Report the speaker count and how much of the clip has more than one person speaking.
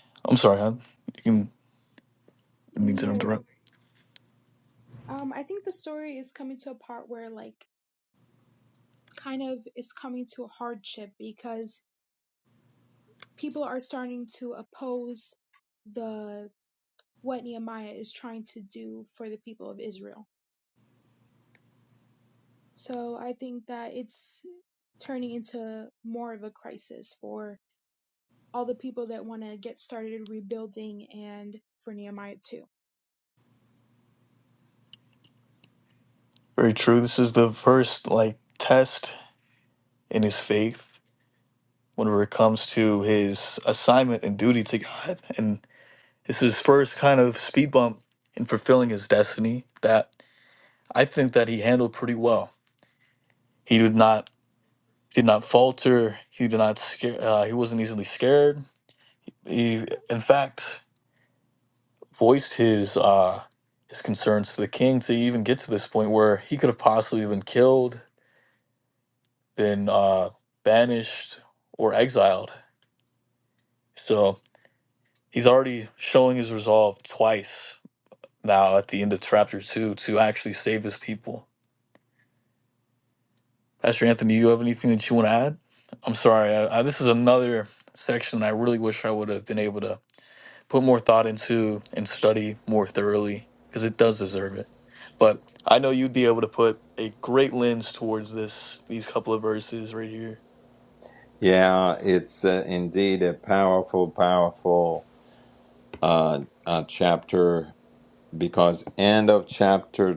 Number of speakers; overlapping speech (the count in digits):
3, about 1%